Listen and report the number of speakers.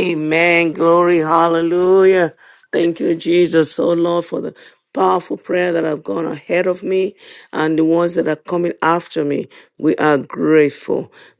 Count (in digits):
1